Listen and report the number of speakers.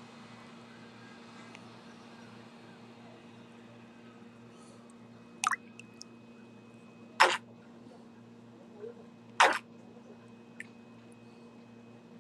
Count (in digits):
0